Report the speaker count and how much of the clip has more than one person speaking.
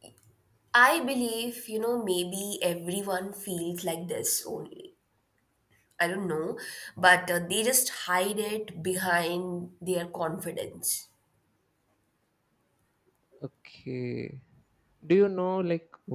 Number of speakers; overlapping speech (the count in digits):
2, no overlap